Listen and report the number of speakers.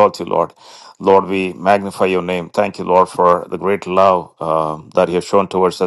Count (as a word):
one